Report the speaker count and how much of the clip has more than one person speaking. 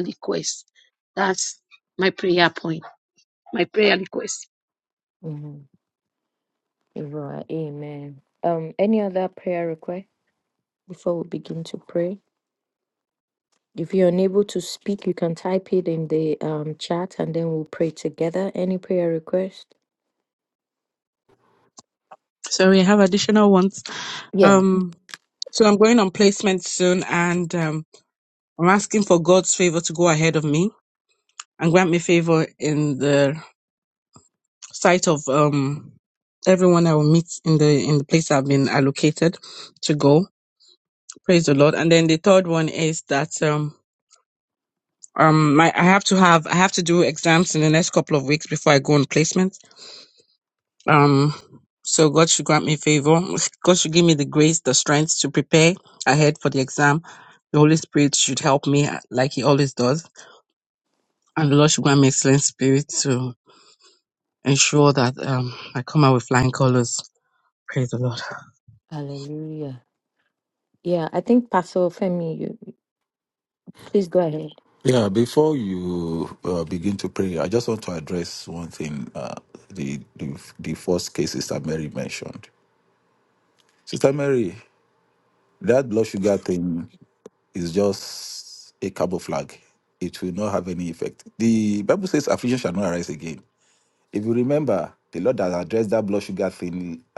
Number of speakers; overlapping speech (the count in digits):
4, under 1%